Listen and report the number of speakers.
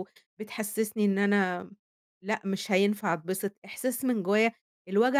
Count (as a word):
one